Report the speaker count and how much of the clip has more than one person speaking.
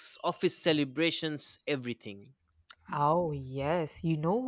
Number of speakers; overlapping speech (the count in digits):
2, no overlap